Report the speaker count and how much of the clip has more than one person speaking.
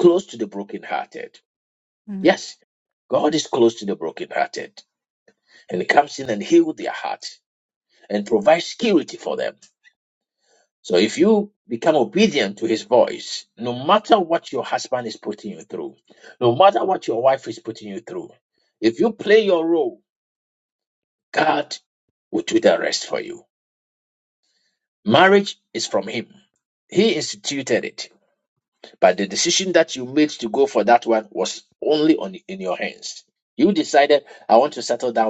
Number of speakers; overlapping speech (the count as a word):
one, no overlap